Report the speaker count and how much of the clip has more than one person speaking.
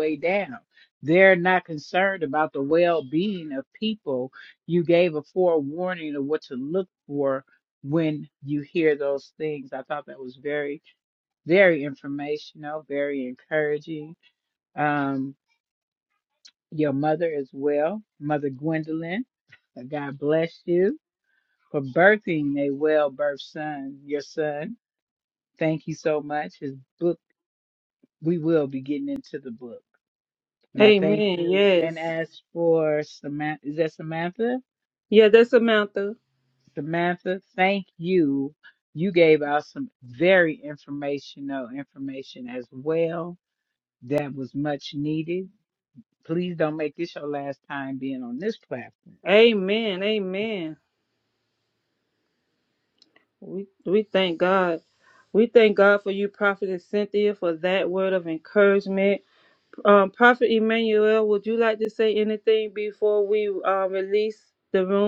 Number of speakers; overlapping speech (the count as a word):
two, about 2%